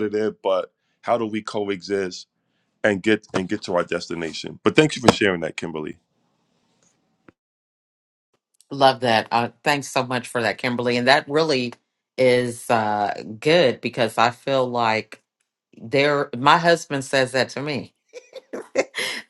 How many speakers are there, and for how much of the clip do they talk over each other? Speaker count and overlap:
2, no overlap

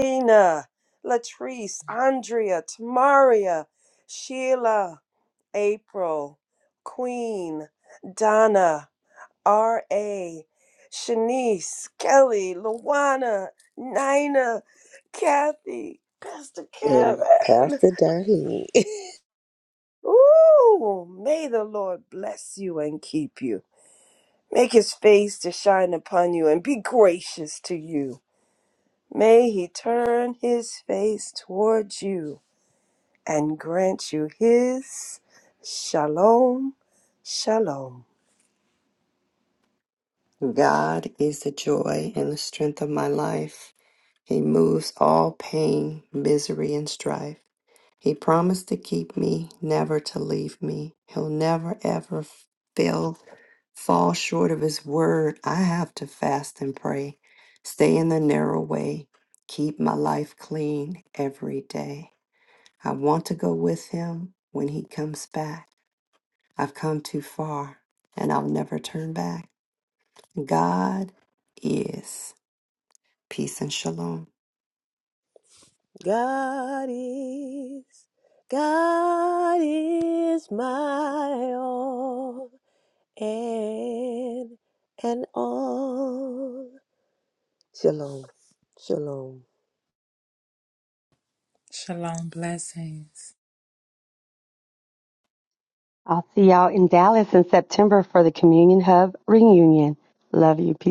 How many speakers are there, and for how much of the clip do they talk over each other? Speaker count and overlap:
5, about 1%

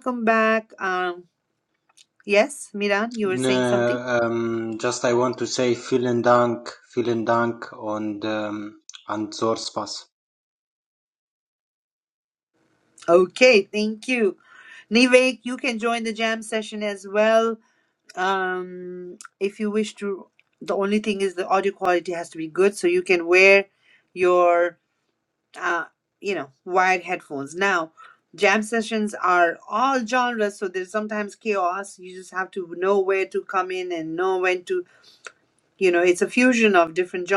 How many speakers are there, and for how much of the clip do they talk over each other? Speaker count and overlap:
2, about 2%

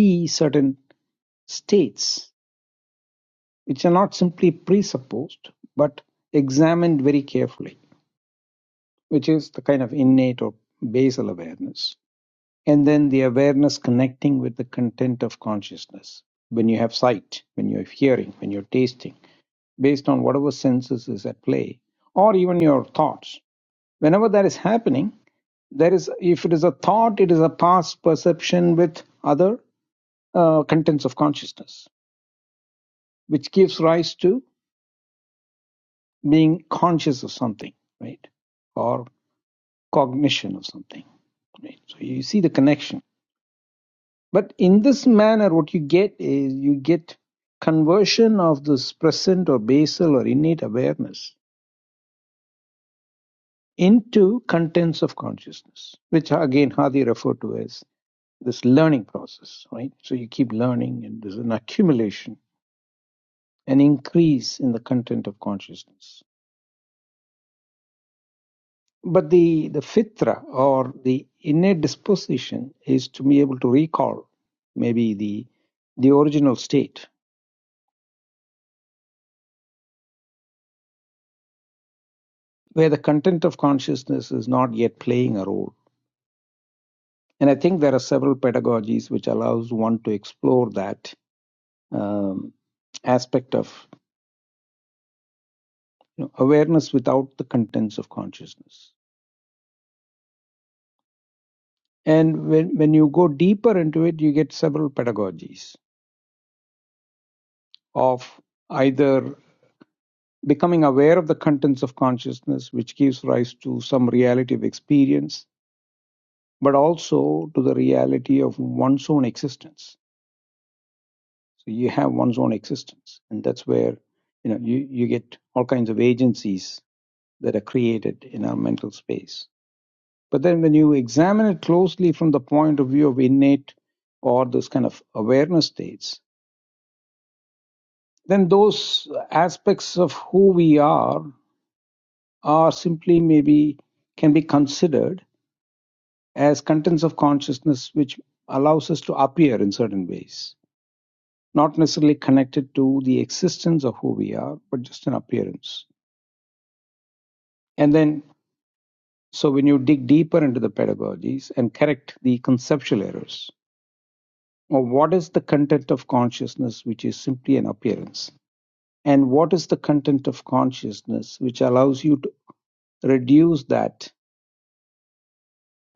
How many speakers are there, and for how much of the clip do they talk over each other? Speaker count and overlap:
1, no overlap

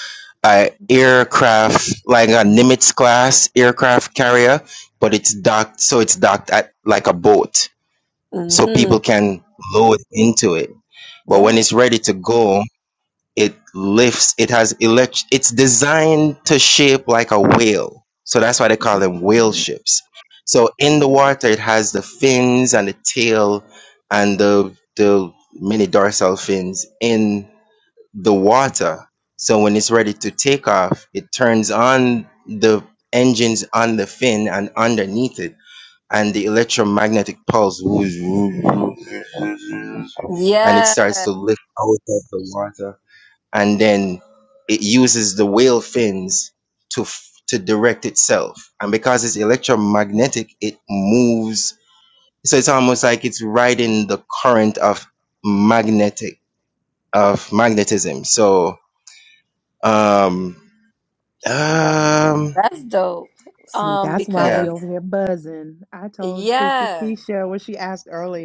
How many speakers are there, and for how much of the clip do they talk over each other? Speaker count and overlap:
3, about 5%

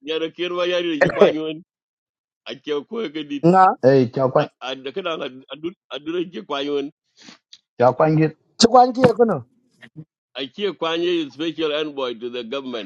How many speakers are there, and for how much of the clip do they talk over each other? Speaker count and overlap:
3, no overlap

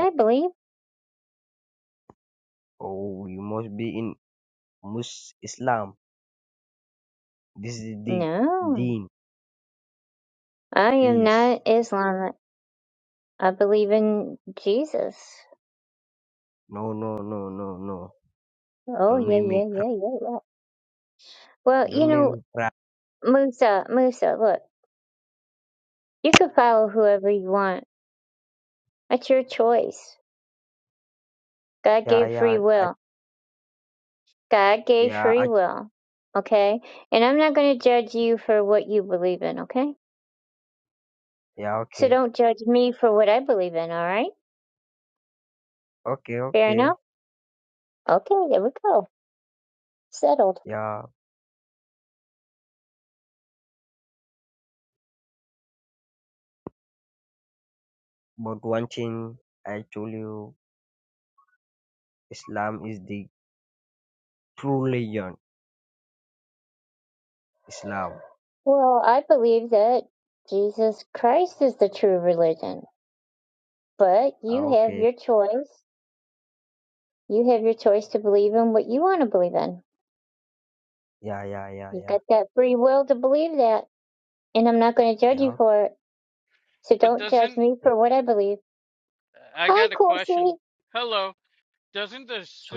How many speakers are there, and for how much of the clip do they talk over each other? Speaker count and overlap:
3, about 7%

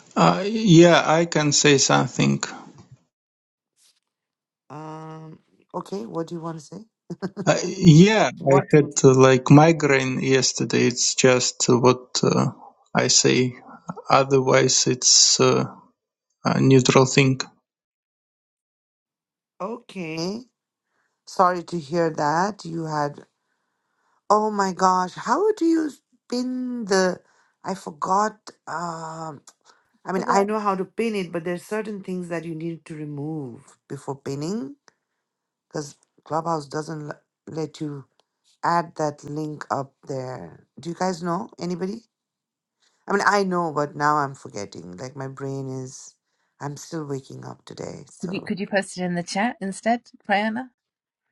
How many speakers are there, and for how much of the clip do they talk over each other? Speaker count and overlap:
3, about 1%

